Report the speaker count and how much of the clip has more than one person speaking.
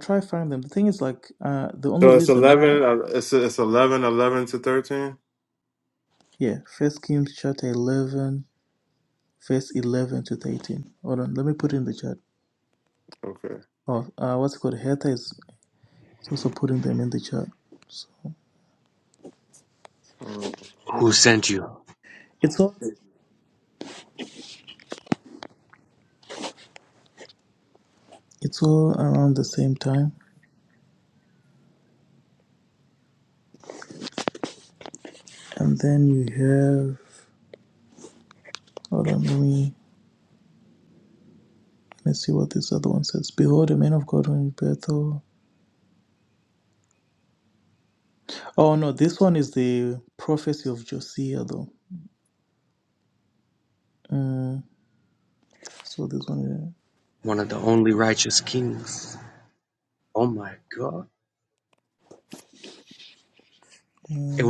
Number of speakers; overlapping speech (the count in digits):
3, about 2%